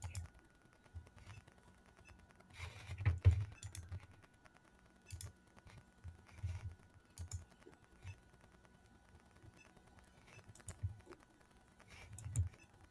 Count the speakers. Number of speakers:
0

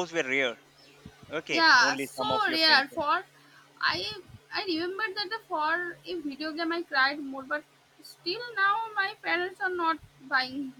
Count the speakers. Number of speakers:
2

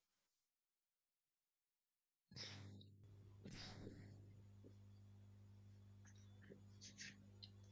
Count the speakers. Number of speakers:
0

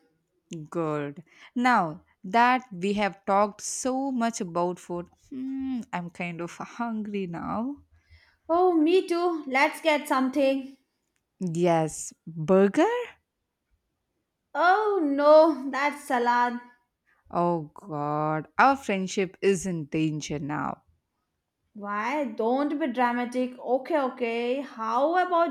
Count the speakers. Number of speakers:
2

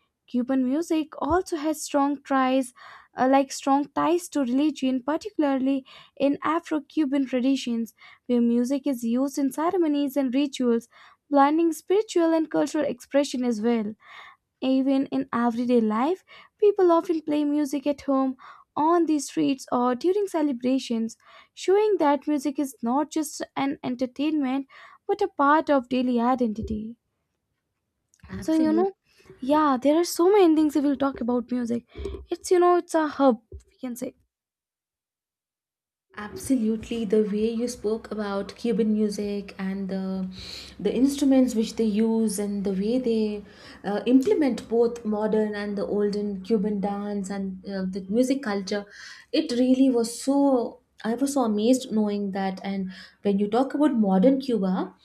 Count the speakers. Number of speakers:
2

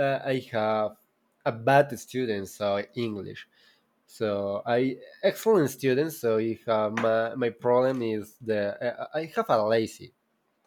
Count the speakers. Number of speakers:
1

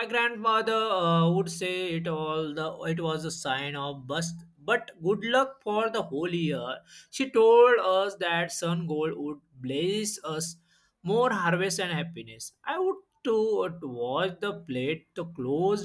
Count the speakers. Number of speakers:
1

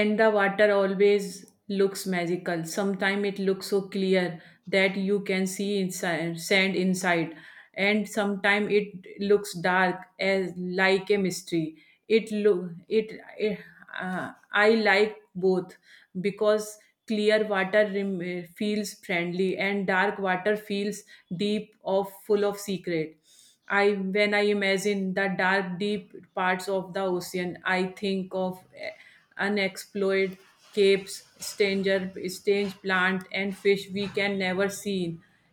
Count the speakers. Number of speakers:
1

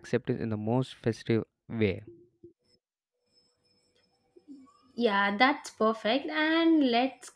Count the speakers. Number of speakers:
2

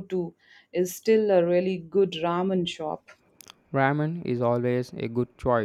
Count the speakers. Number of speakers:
2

